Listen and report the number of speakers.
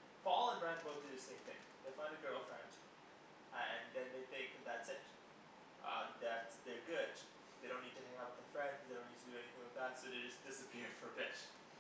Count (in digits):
1